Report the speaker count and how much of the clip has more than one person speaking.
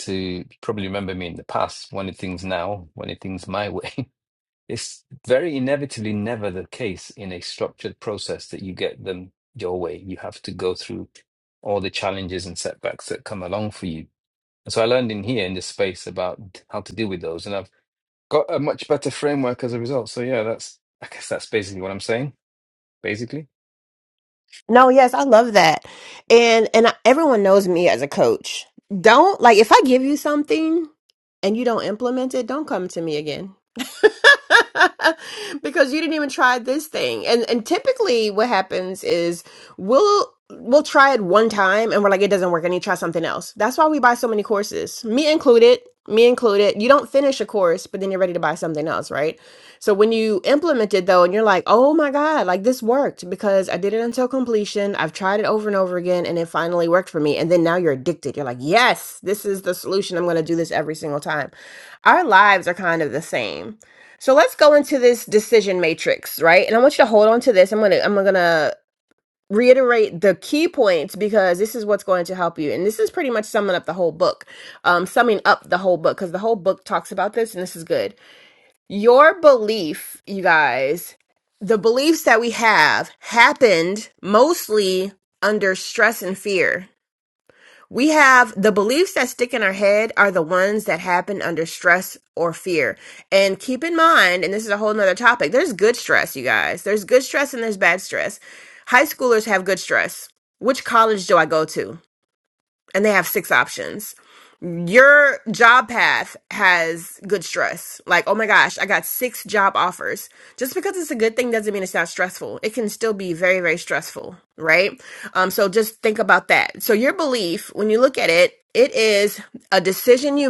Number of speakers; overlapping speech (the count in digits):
2, no overlap